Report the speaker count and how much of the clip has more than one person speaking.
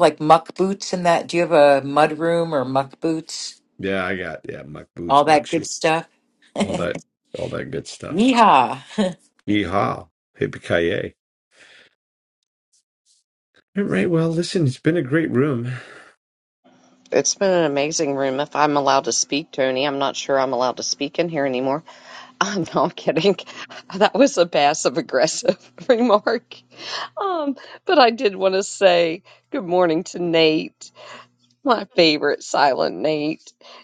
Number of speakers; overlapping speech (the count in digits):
3, about 2%